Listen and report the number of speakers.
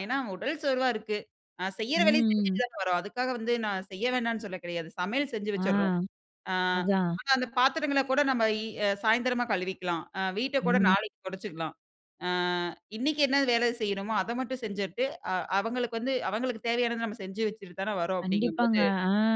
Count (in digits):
2